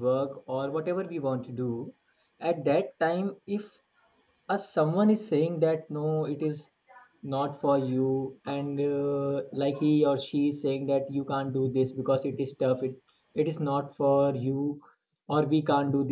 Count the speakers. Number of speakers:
one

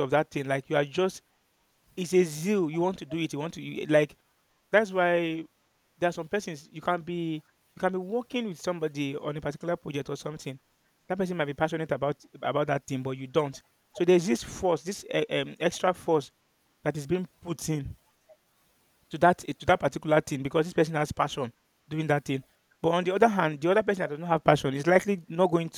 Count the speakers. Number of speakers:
one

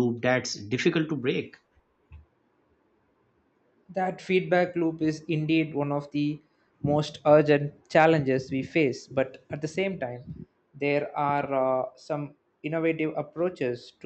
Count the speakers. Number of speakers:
two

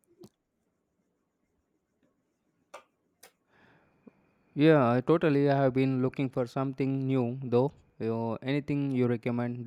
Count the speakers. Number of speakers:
one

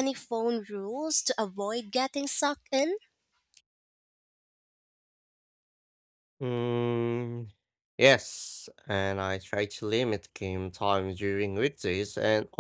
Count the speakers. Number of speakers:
two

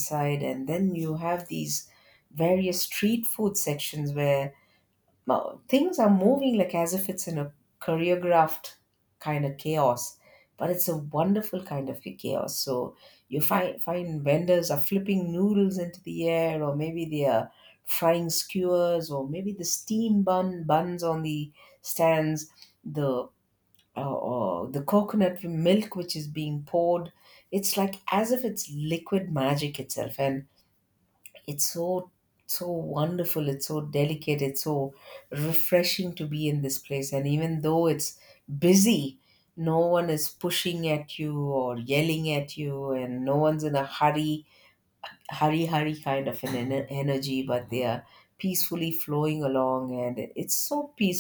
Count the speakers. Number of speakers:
one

